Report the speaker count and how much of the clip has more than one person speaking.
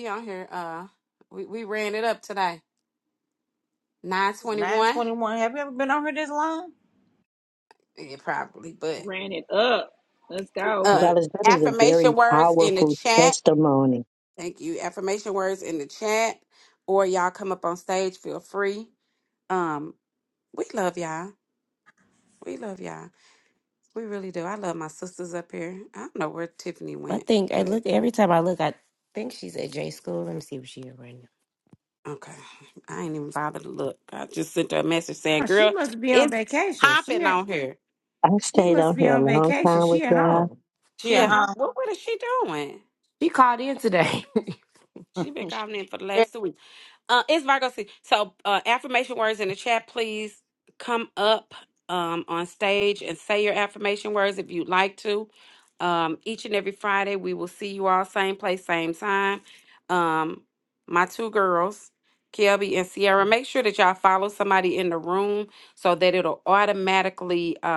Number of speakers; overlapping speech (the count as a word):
five, about 10%